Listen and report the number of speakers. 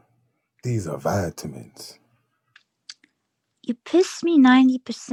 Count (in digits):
2